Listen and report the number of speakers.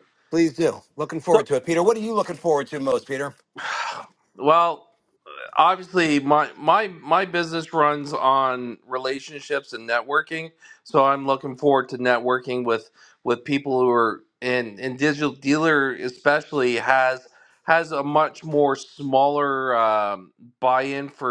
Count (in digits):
2